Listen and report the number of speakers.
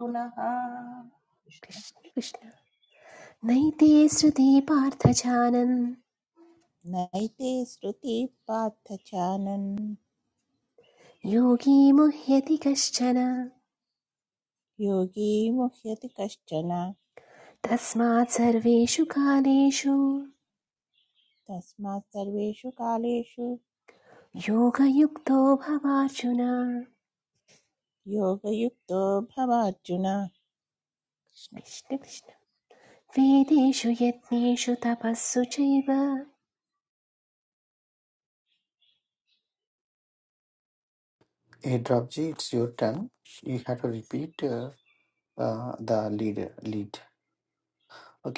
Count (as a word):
four